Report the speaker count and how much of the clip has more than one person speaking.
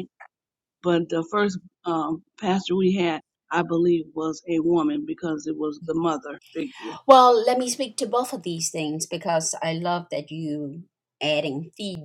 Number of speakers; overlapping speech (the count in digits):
2, no overlap